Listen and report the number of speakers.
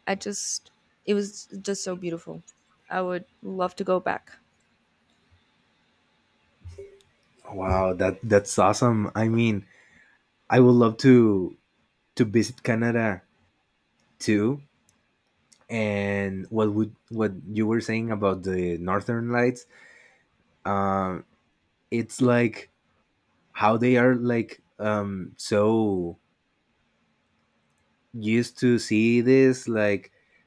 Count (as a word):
two